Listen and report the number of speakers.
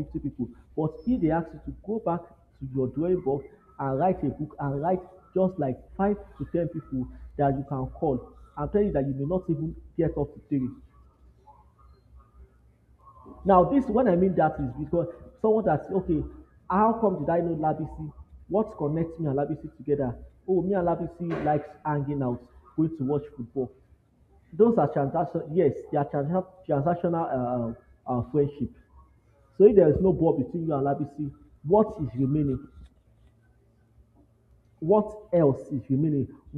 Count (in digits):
1